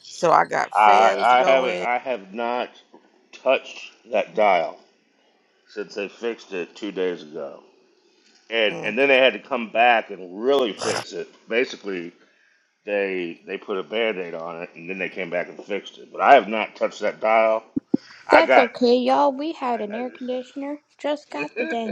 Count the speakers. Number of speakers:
3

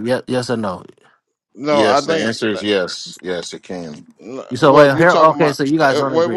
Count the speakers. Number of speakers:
3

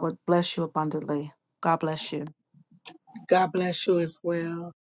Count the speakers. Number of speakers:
2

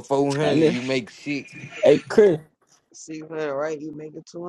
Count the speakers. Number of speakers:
3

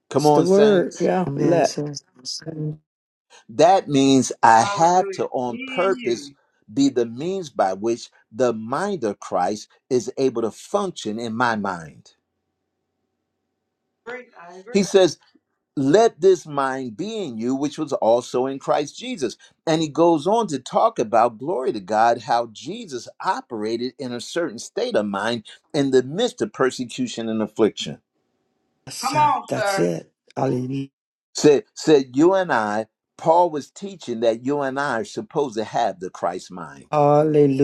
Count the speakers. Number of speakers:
4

